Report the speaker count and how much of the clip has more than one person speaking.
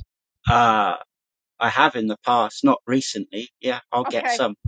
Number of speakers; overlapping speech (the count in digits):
1, no overlap